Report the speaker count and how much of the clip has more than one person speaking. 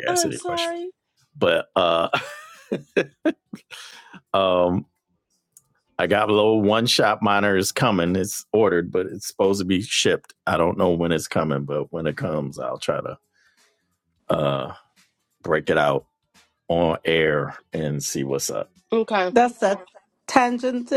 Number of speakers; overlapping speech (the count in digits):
3, about 3%